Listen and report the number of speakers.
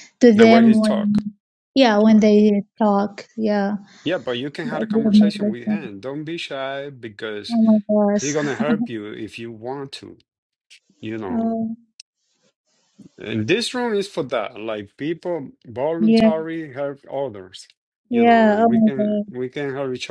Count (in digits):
2